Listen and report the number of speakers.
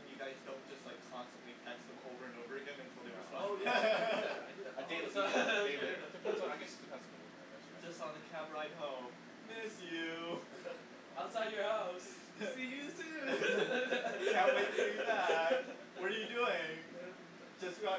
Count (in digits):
3